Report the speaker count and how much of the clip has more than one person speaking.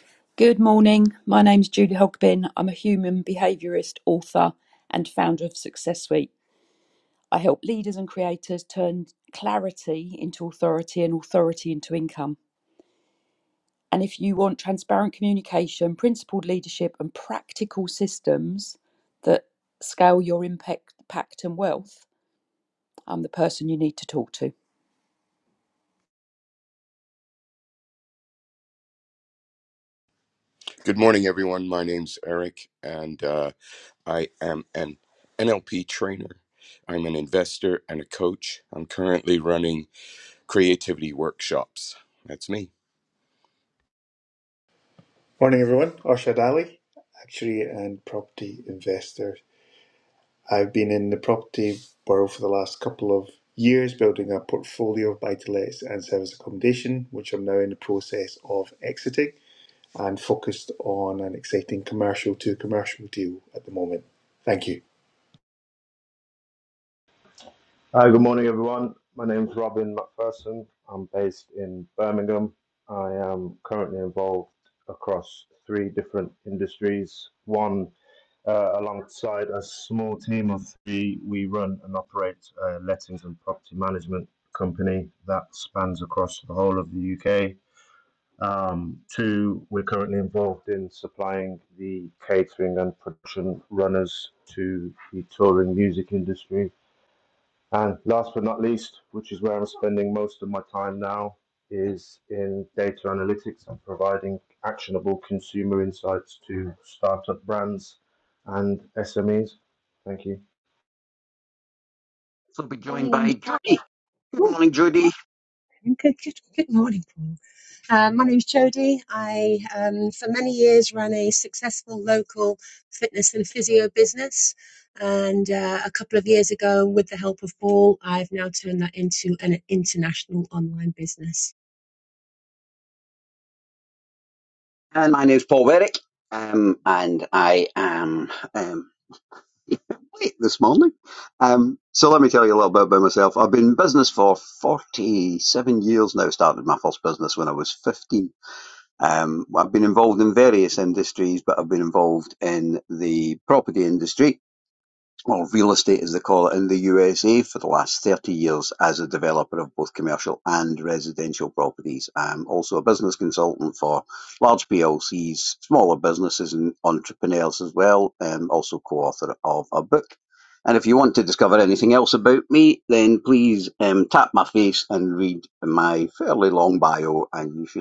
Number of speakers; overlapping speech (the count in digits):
6, under 1%